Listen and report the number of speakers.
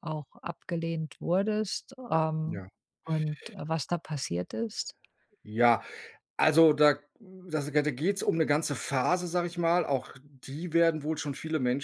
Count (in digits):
2